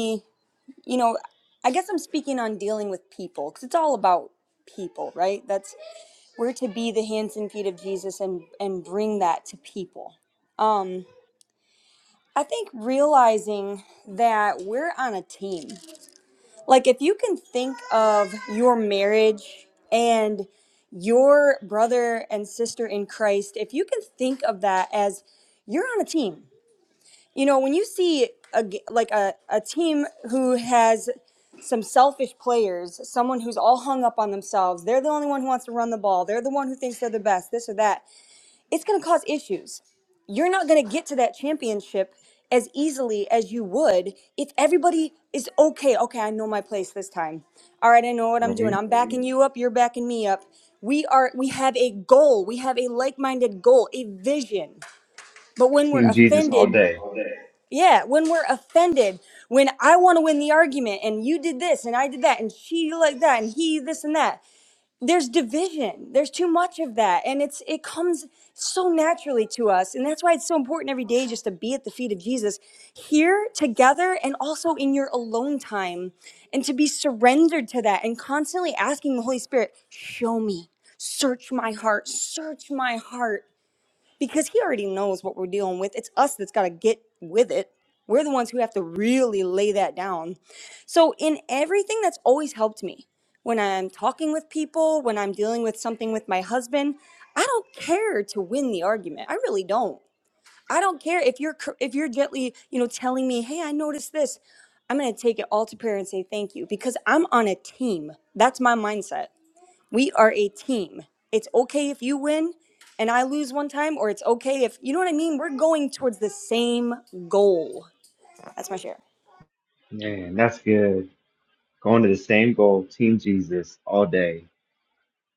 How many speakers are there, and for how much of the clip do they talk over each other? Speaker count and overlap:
2, about 1%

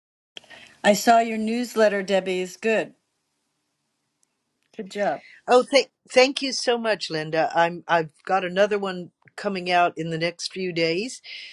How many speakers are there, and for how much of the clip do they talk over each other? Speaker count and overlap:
2, no overlap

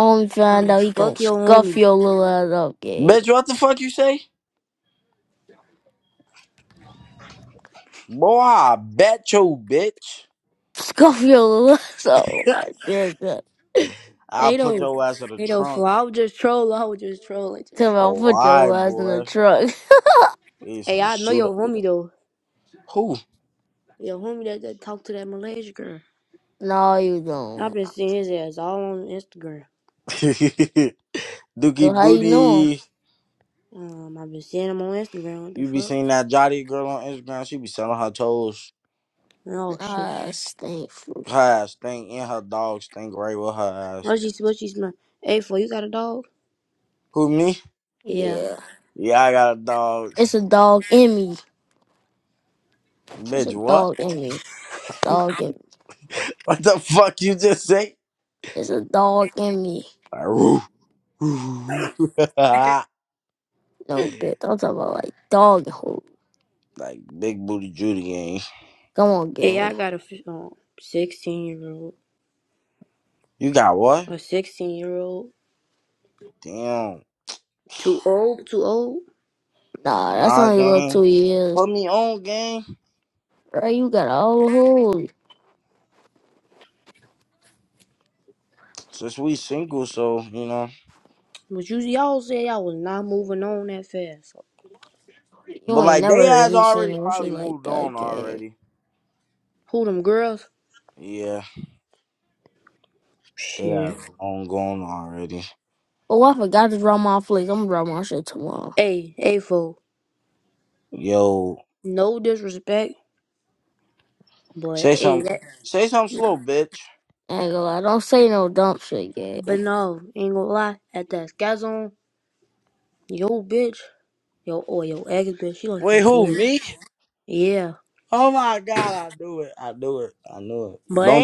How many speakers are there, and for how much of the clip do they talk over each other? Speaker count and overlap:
3, about 10%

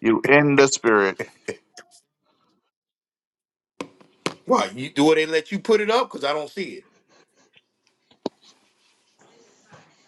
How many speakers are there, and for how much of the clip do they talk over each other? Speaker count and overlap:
2, no overlap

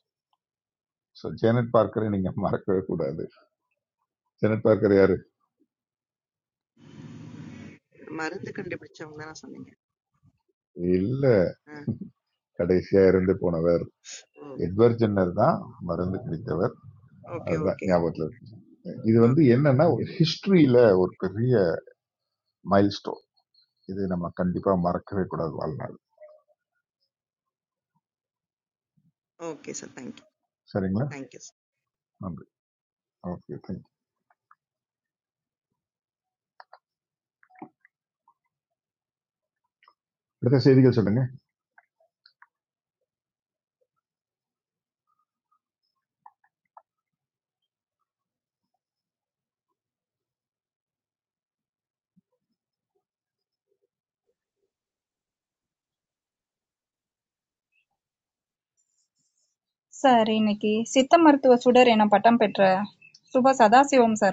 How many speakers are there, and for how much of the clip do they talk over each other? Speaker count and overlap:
3, about 1%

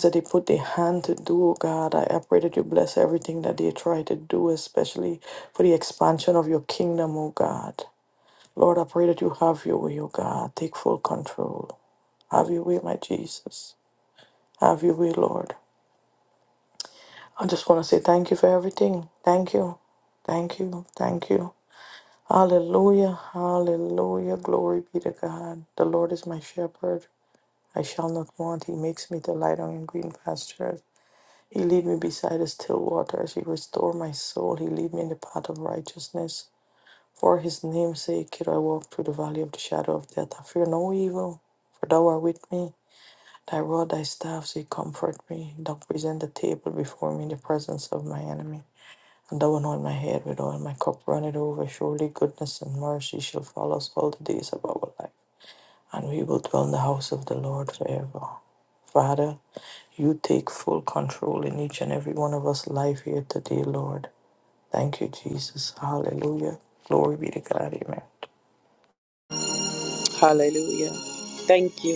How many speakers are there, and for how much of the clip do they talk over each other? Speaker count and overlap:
2, no overlap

